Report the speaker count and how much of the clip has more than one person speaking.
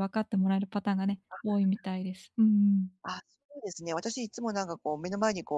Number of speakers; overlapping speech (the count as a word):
two, about 2%